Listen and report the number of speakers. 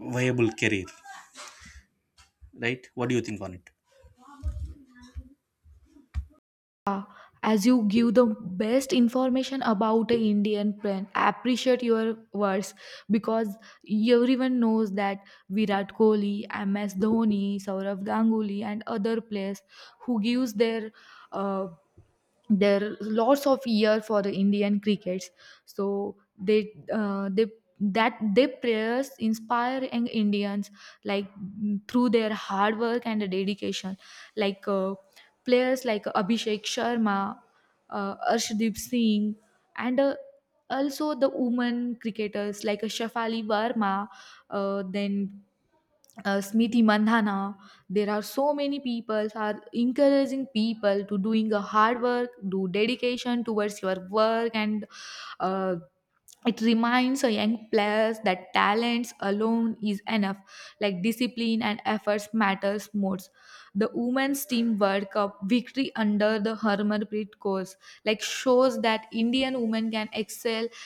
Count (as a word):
two